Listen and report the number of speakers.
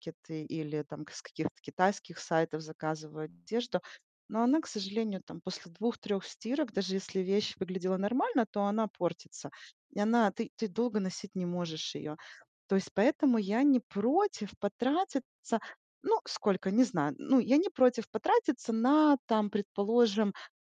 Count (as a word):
one